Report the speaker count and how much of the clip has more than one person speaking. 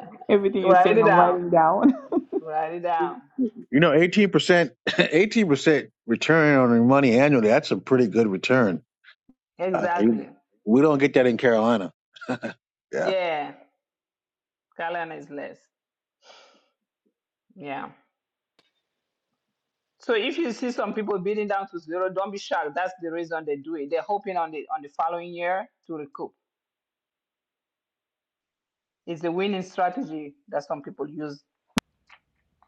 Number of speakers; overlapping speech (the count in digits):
3, about 4%